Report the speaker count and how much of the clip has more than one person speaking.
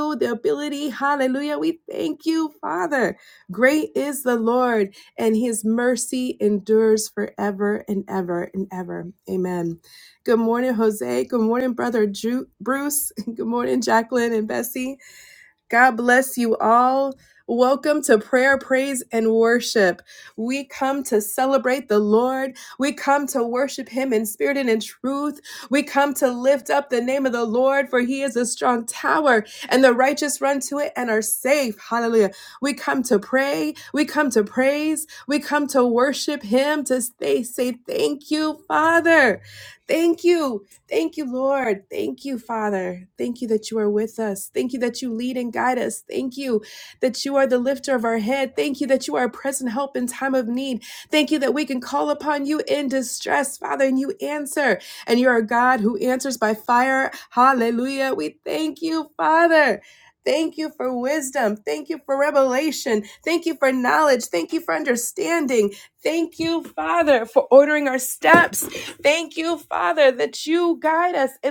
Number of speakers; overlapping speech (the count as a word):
one, no overlap